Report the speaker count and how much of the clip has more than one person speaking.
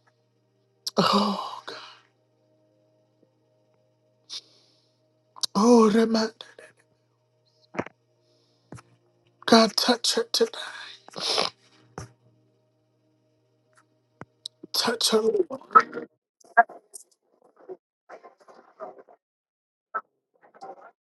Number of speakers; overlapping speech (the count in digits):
1, no overlap